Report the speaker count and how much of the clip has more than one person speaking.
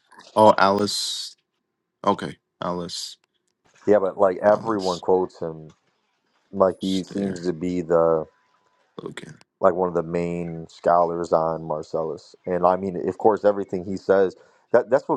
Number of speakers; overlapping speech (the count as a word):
two, about 7%